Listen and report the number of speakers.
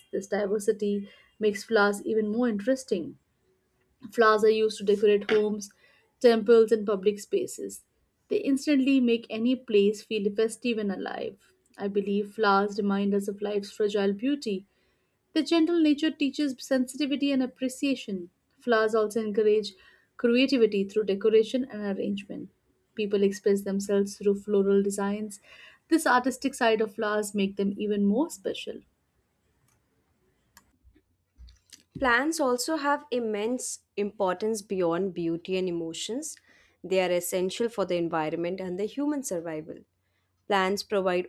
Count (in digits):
2